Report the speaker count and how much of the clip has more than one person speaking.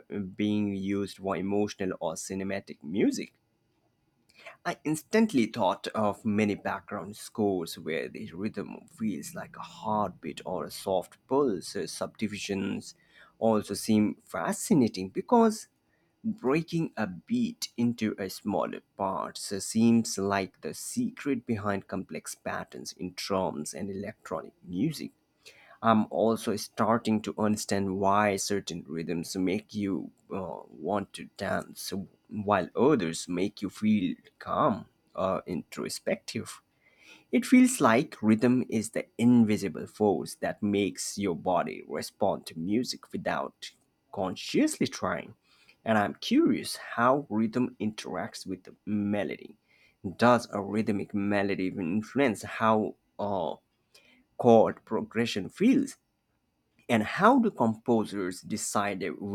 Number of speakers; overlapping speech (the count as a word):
one, no overlap